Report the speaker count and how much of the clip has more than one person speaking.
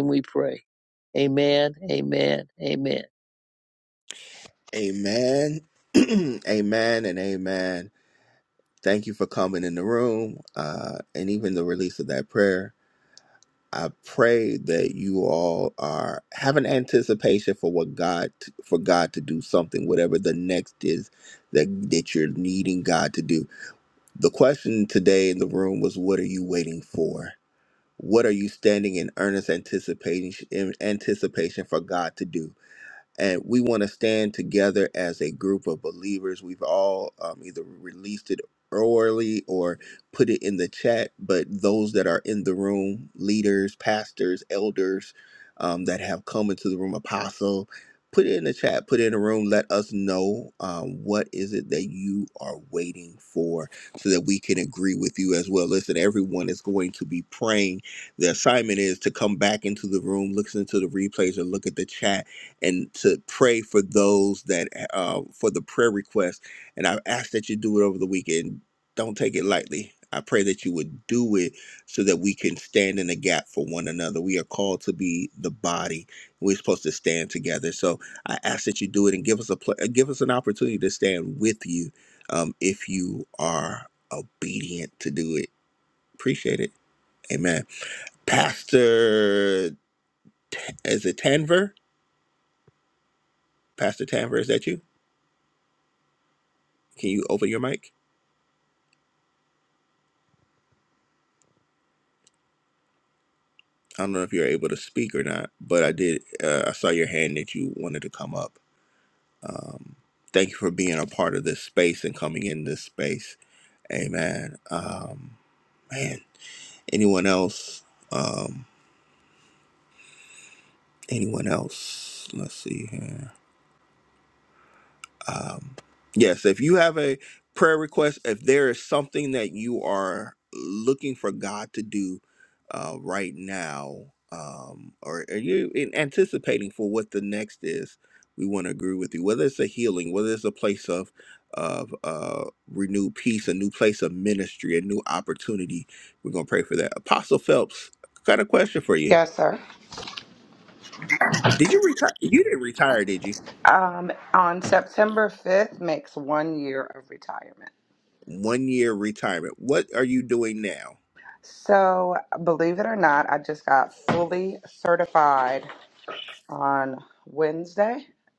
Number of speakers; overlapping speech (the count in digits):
3, under 1%